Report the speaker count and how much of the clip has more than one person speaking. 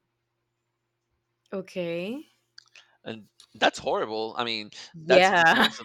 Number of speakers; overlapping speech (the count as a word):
two, about 11%